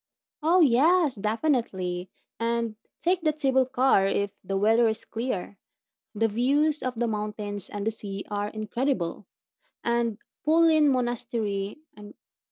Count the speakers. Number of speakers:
one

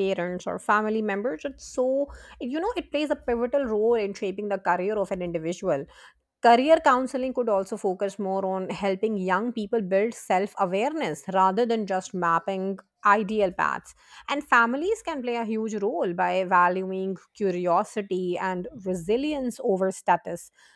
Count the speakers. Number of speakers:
one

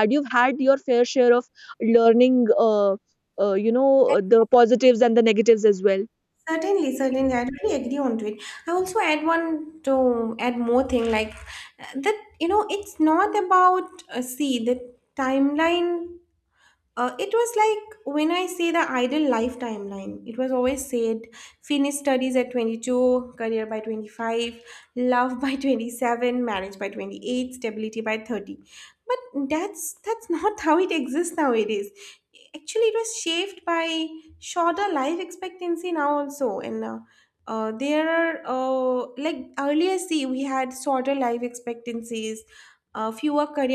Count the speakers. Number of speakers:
two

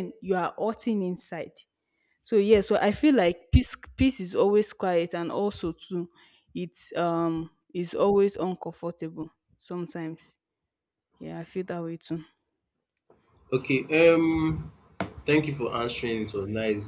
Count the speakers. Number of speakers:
two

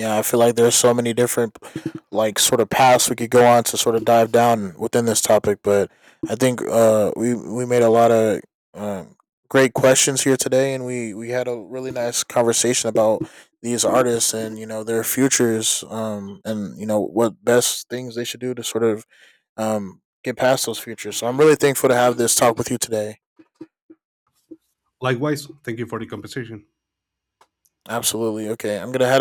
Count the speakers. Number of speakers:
two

